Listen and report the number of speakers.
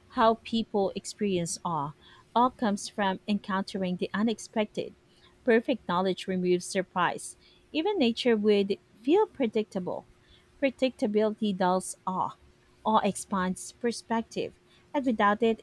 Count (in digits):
1